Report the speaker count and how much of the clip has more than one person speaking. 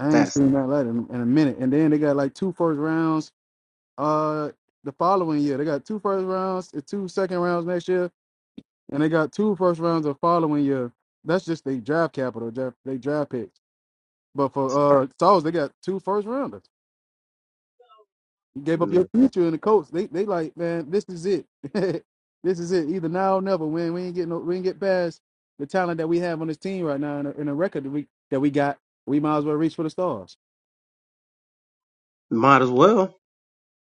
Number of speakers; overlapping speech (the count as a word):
two, about 1%